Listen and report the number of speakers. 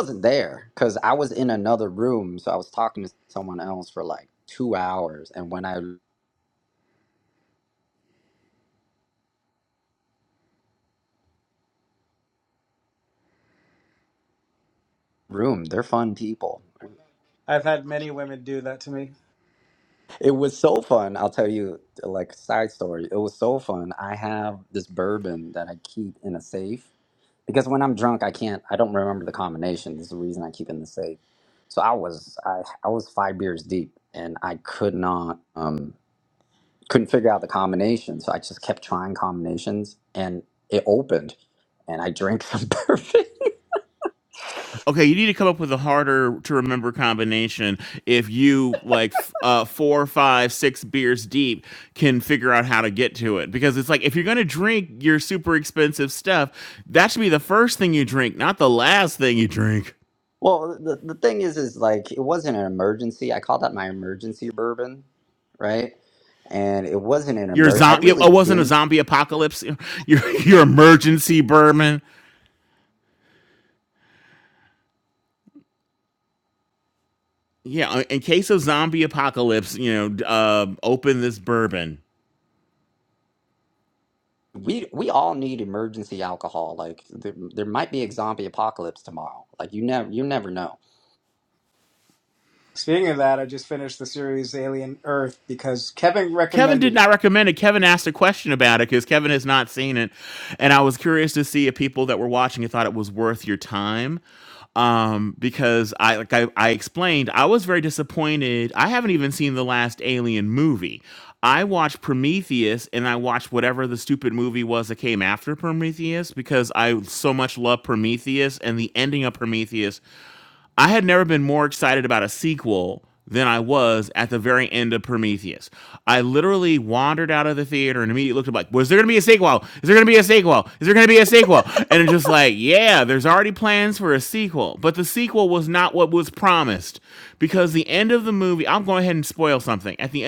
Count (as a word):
three